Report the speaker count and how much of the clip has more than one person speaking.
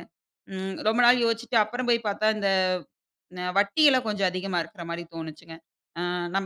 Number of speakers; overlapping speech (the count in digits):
1, no overlap